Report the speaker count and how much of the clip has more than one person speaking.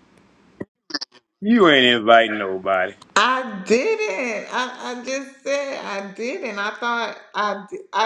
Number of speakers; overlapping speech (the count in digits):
2, no overlap